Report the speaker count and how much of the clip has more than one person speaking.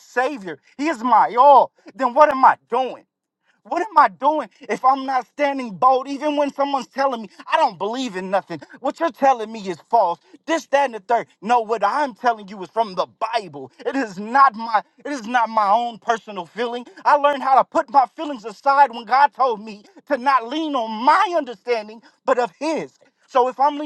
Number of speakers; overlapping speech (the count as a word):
one, no overlap